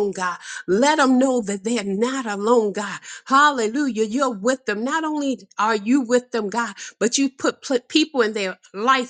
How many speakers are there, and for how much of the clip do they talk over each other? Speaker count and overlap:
one, no overlap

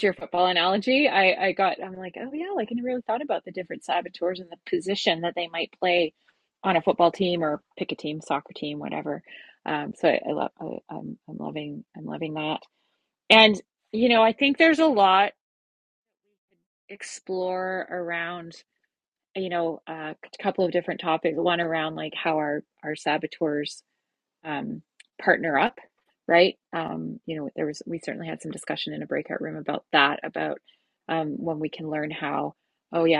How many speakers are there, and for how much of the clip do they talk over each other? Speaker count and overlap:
one, no overlap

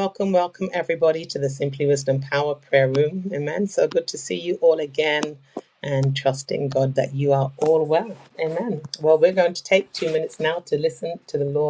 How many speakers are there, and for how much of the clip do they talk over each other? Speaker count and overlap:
one, no overlap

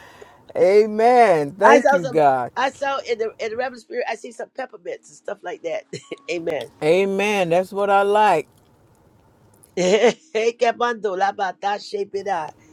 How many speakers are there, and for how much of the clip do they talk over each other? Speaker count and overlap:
two, about 5%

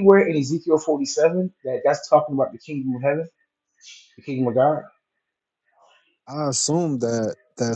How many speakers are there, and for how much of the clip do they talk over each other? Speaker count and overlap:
two, no overlap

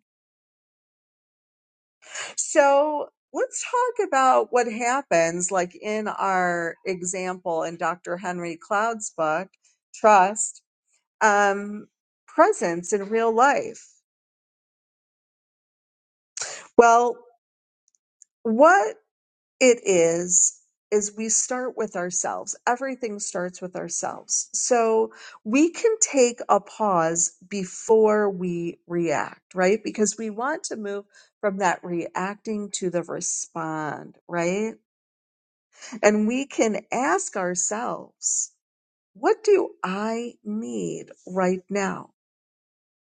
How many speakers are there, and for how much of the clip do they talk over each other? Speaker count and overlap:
one, no overlap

